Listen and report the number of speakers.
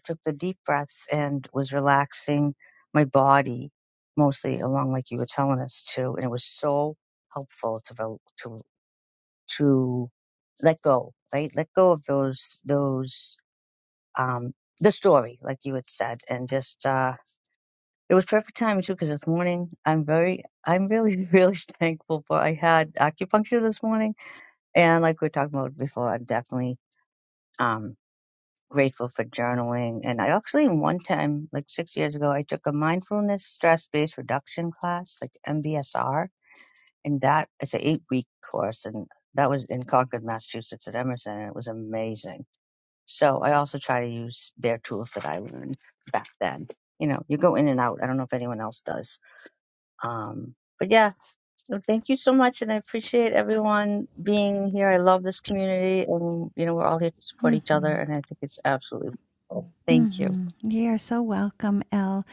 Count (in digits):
2